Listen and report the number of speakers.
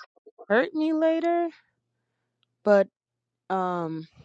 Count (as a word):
one